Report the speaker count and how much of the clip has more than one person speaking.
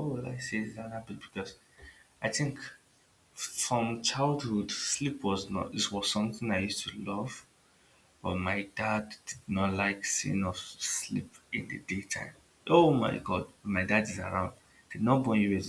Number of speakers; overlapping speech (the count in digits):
1, no overlap